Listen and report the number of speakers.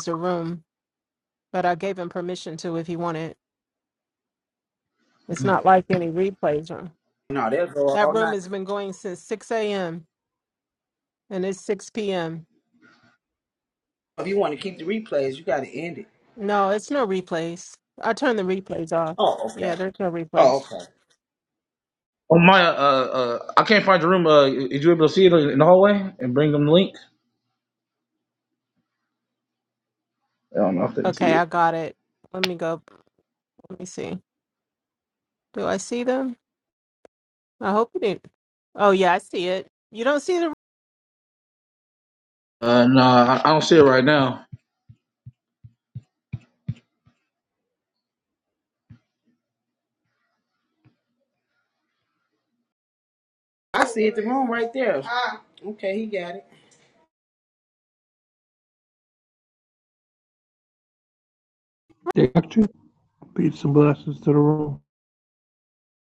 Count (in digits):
4